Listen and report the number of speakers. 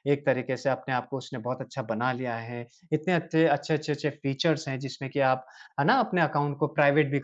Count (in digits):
1